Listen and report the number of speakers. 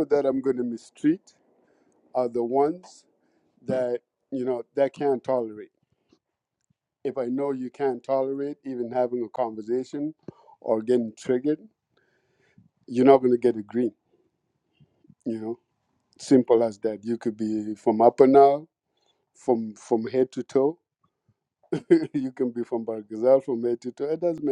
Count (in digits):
1